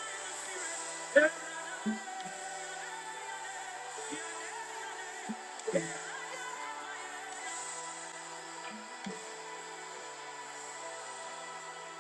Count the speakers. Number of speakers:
zero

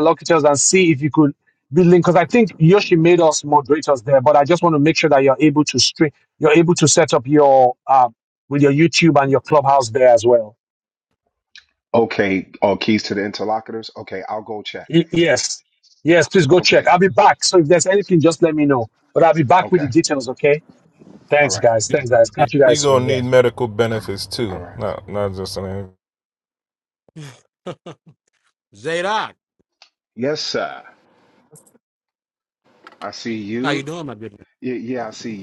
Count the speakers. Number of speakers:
four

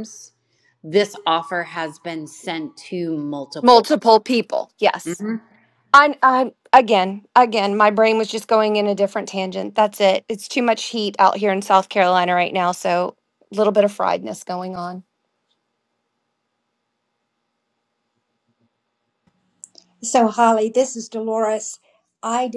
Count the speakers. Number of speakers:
three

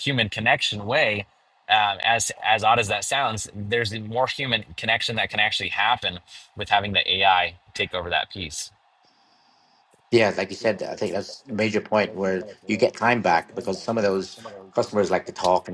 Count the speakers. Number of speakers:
two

